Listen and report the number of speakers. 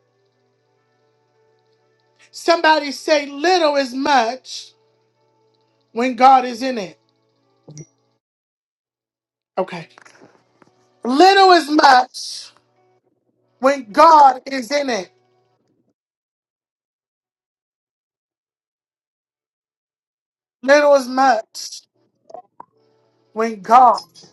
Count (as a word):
one